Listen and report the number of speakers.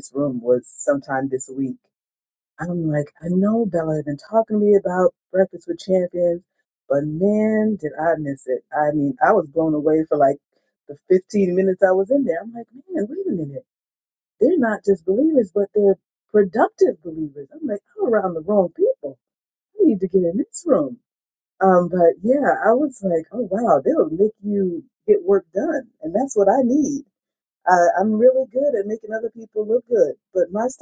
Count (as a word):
one